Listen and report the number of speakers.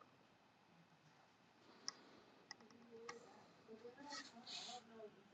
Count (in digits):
0